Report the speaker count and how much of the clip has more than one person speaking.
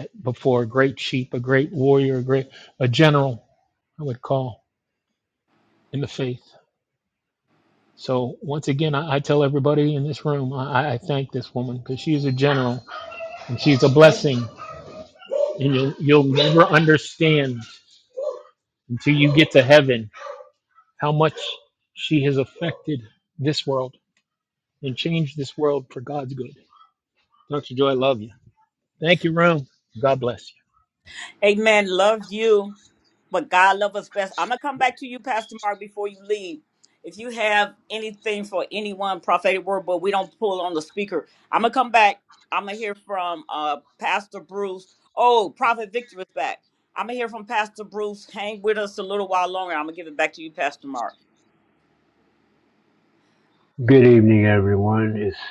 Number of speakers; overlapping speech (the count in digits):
3, no overlap